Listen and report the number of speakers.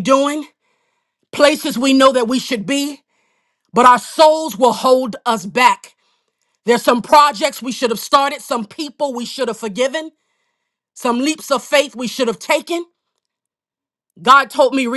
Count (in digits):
1